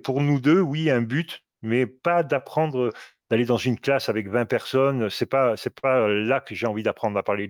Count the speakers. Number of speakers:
1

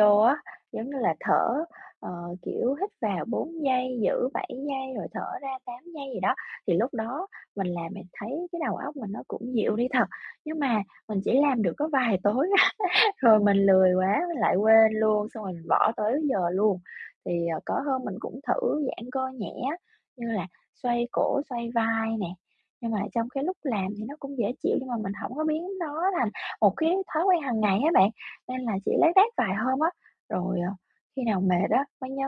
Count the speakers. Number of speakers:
1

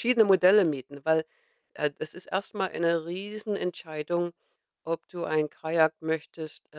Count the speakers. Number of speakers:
1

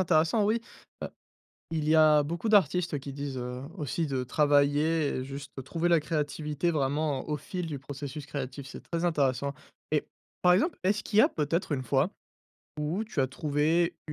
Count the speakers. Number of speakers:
1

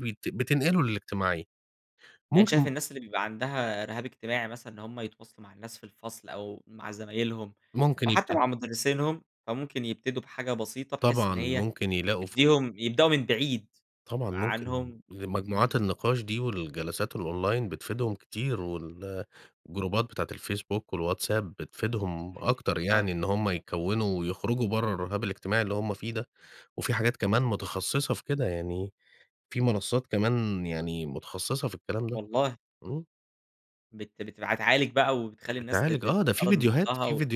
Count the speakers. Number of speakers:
2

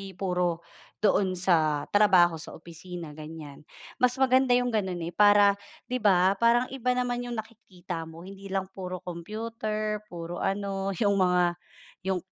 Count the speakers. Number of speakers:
1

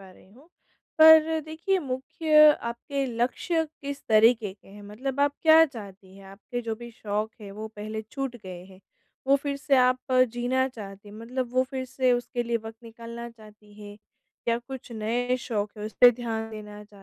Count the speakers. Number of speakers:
1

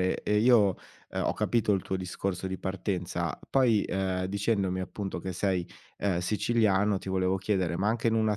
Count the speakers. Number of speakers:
1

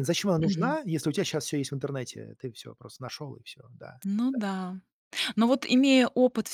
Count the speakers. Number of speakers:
2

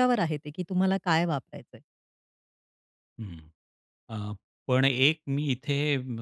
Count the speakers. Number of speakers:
2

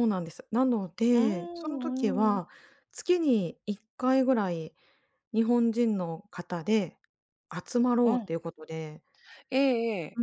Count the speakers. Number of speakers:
2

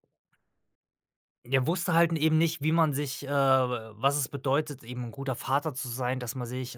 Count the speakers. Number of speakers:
1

